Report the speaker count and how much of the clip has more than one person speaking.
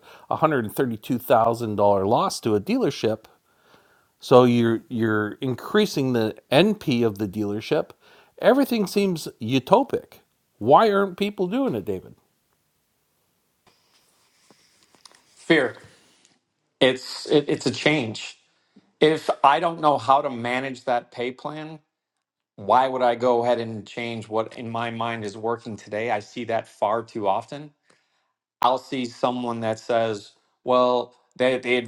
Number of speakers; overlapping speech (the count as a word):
two, no overlap